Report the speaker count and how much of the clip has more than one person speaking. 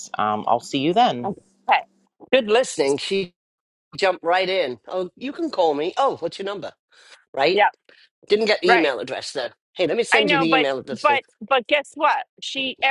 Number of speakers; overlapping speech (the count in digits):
3, about 11%